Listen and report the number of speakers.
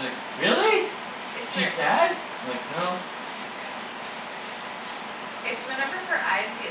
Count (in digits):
2